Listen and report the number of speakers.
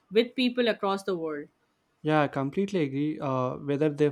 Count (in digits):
2